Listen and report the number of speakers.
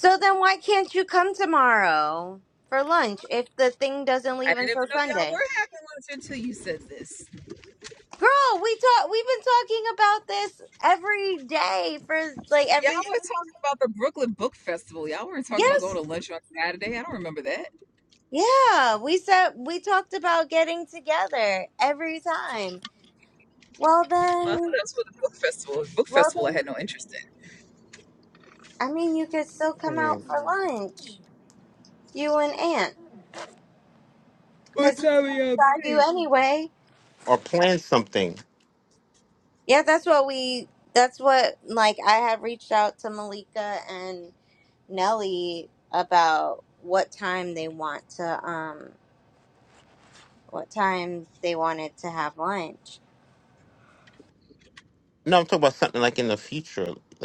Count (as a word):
three